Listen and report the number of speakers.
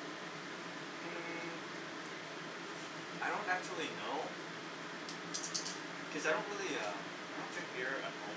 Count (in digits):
1